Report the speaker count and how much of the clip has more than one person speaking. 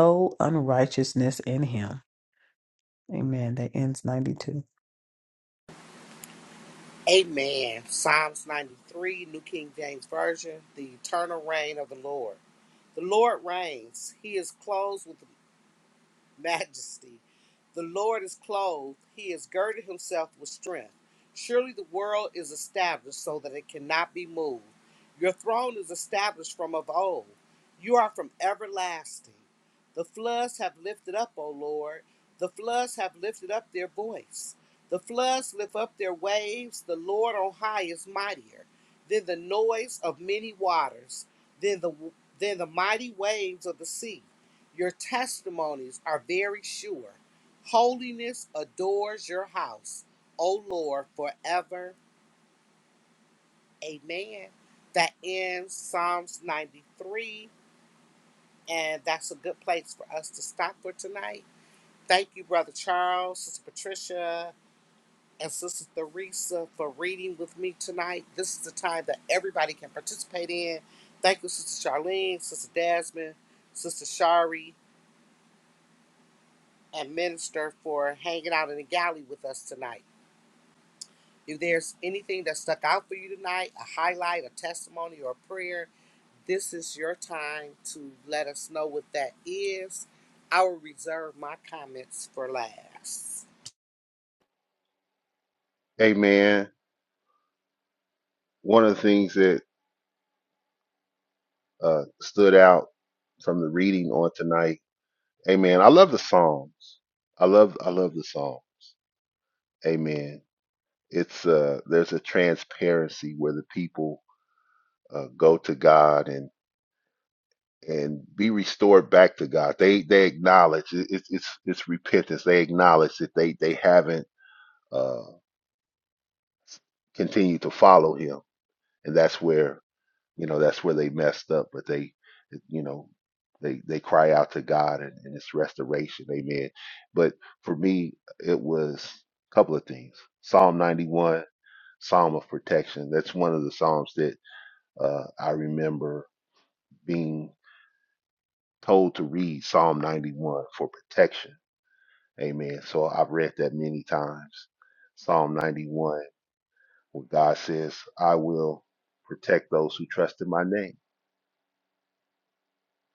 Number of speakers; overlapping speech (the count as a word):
three, no overlap